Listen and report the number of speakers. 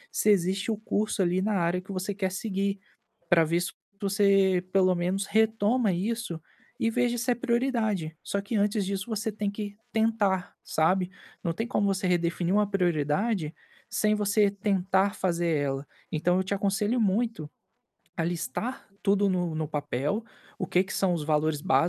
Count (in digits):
1